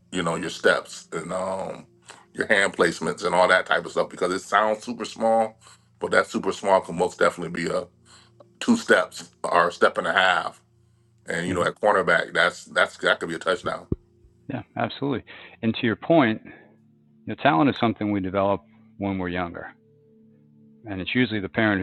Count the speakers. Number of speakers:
2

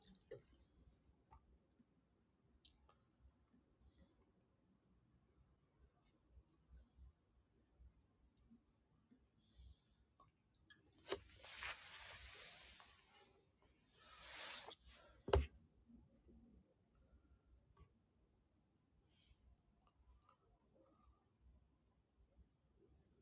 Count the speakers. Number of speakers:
0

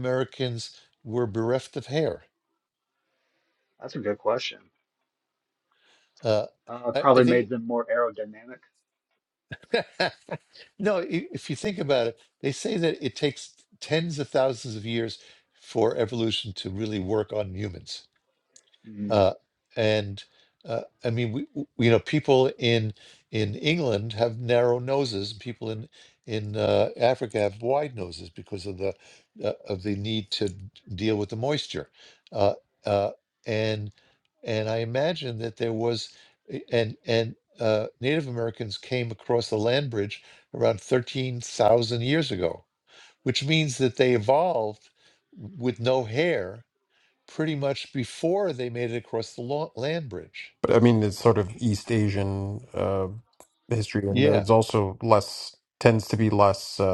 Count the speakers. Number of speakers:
3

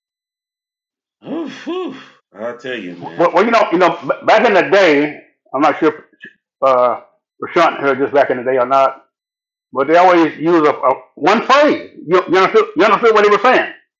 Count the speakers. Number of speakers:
2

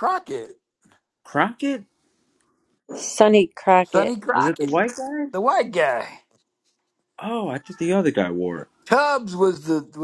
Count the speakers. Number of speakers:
3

